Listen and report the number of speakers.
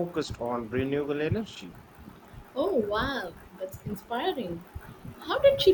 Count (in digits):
2